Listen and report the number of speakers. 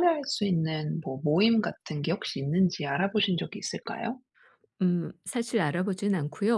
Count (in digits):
2